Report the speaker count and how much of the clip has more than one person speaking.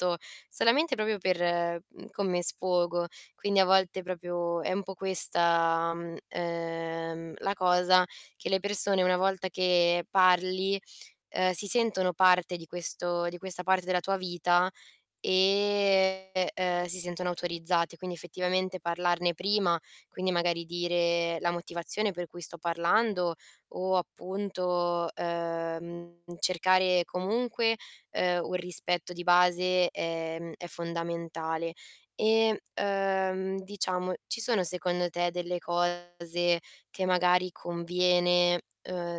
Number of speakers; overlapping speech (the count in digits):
1, no overlap